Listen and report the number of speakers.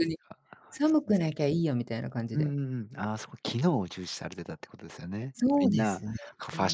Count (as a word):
two